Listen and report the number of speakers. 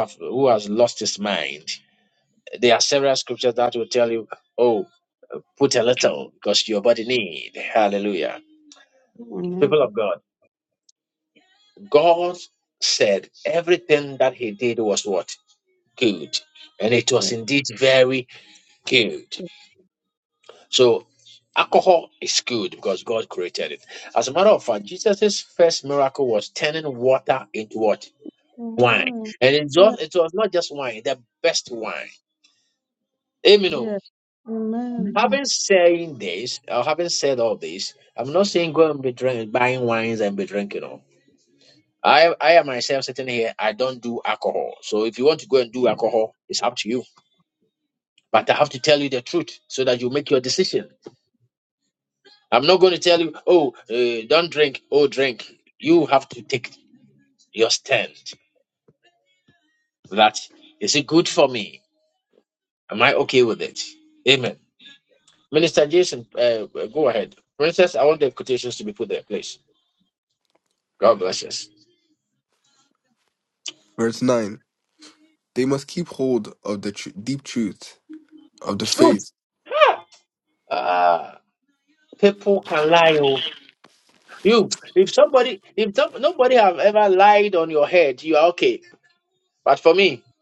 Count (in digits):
3